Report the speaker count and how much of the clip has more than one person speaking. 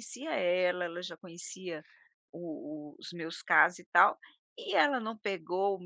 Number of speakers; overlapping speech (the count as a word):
one, no overlap